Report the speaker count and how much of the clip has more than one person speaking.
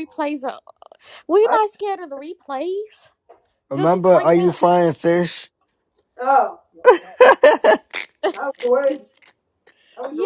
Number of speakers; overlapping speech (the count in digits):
3, about 11%